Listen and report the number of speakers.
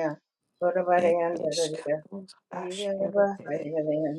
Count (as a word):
two